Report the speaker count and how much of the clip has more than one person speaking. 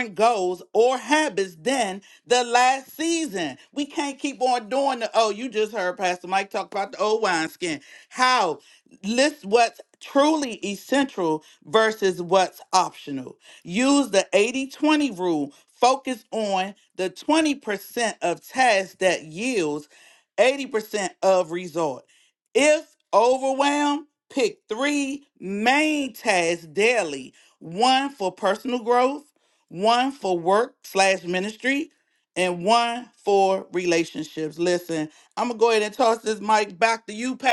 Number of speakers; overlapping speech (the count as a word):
one, no overlap